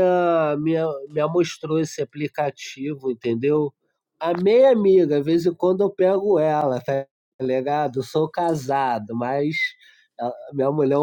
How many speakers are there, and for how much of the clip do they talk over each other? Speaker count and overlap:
1, no overlap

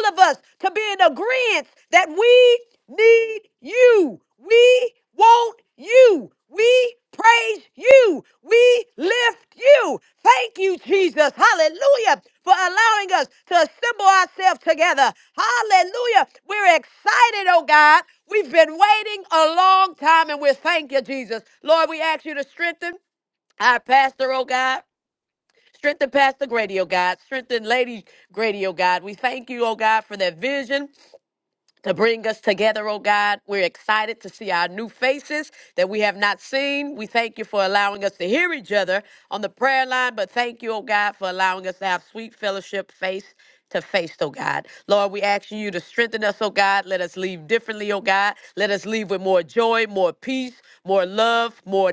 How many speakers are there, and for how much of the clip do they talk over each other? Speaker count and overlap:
1, no overlap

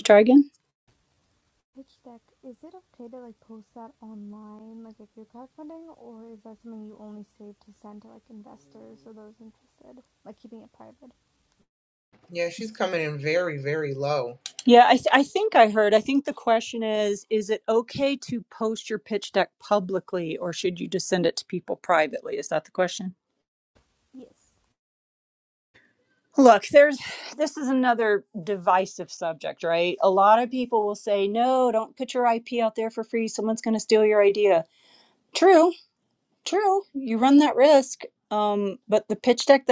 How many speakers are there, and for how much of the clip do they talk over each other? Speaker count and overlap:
3, no overlap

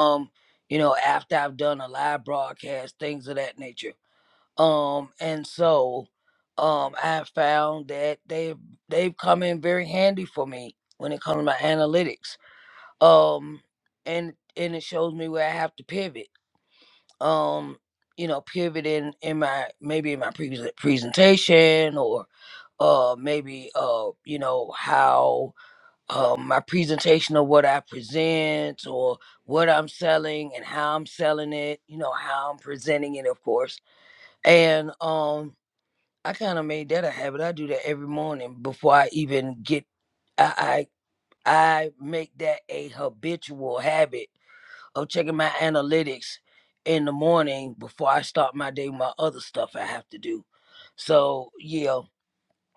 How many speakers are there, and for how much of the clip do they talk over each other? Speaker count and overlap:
1, no overlap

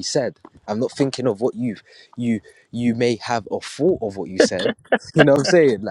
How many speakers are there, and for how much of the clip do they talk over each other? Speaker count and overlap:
1, no overlap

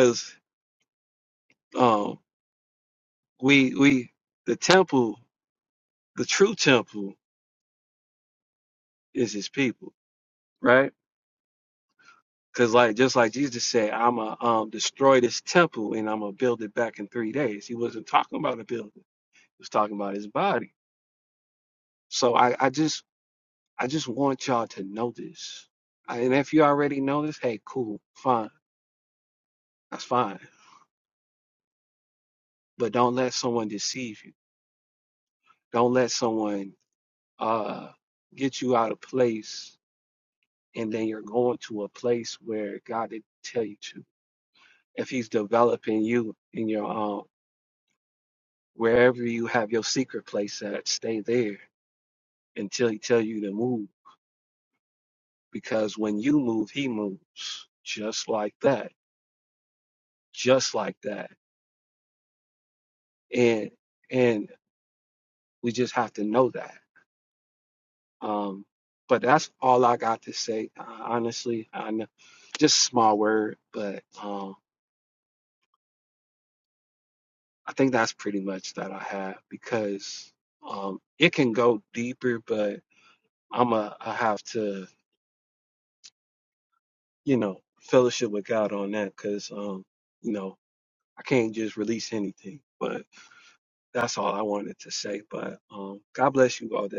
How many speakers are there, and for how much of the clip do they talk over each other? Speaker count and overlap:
1, no overlap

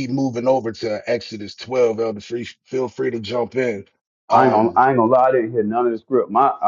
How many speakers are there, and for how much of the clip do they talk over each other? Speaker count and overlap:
2, about 7%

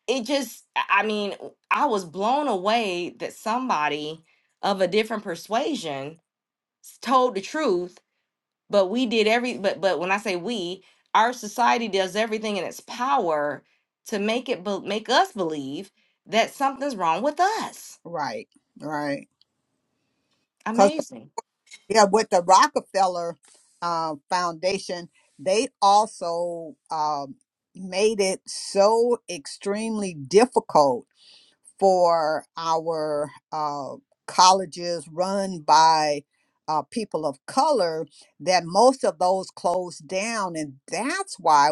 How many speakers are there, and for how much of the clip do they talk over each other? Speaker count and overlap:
2, under 1%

